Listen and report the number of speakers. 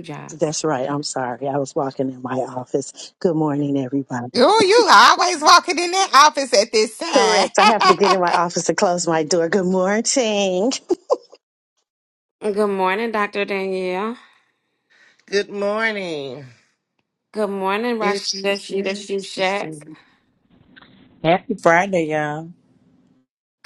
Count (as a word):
five